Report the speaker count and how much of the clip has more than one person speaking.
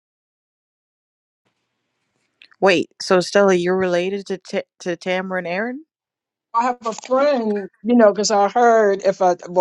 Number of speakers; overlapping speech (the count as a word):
two, no overlap